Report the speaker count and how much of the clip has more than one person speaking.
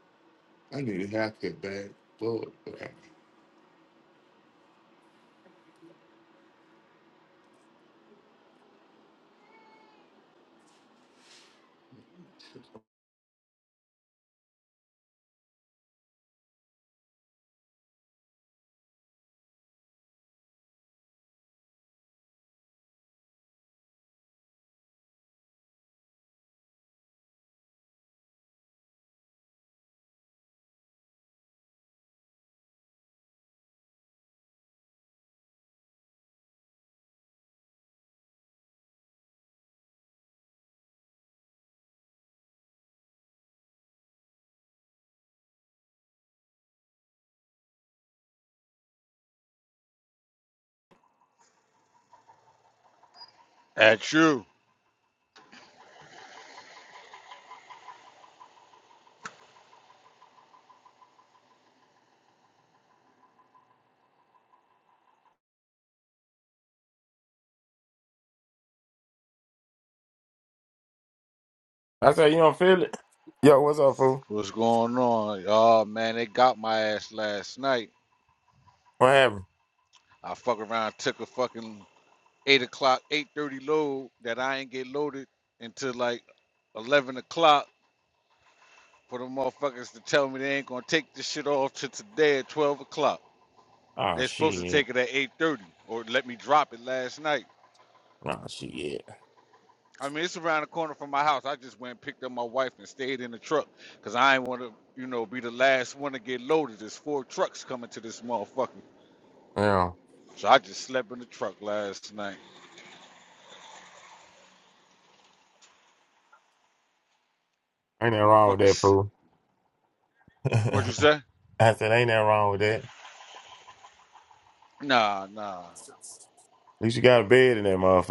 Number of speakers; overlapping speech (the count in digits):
3, about 1%